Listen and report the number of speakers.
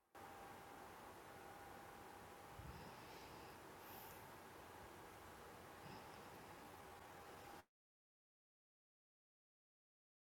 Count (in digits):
0